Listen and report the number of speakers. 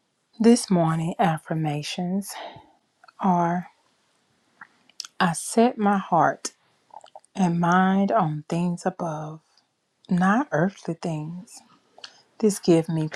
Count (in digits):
1